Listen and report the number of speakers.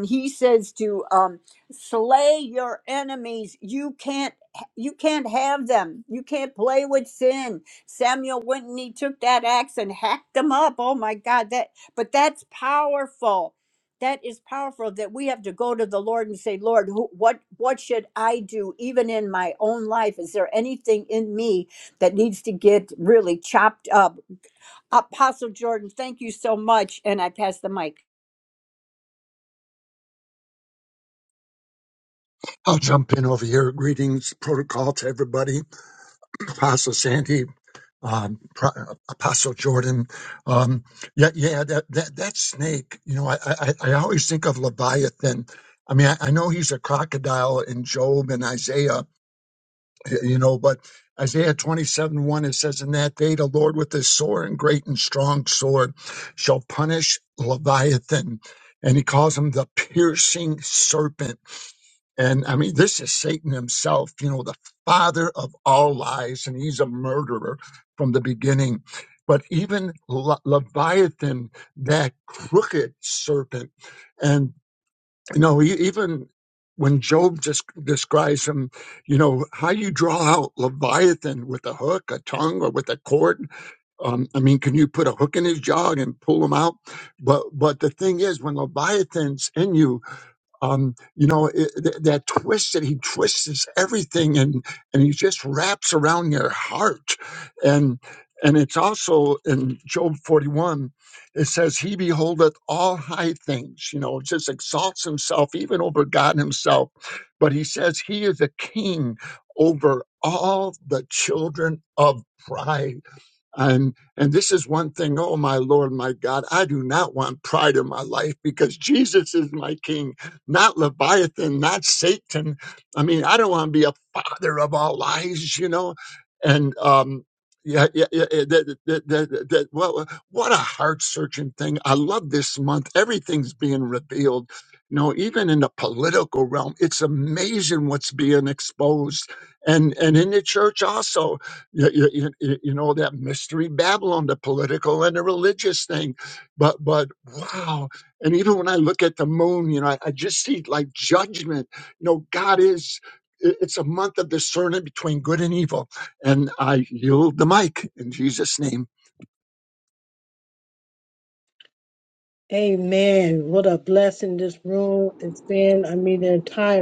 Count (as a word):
three